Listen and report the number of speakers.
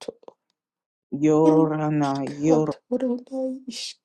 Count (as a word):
two